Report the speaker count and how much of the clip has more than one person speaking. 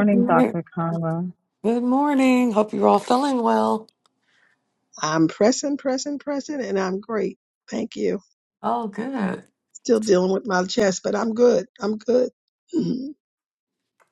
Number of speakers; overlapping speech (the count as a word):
three, about 4%